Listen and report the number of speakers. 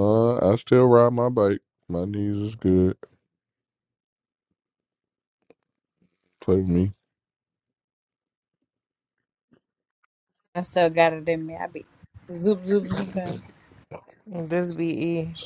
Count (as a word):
three